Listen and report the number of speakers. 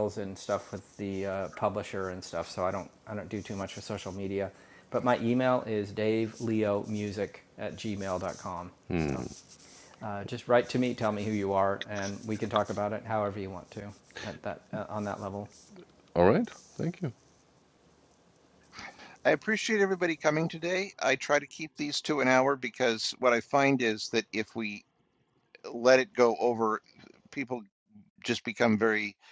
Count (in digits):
3